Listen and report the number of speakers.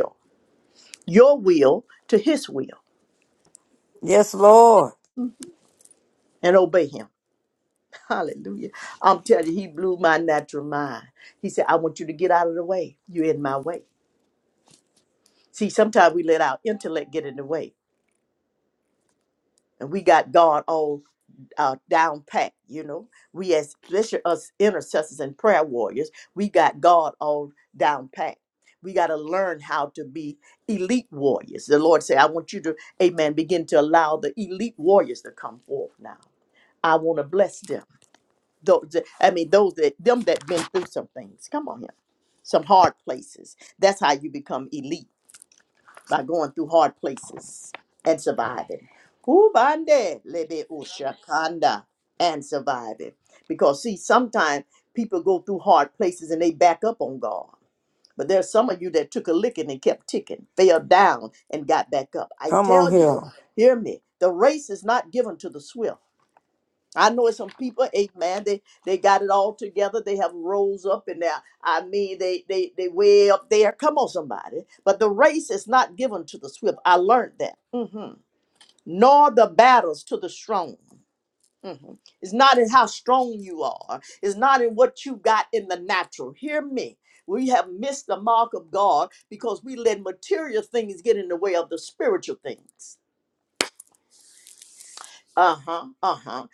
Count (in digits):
2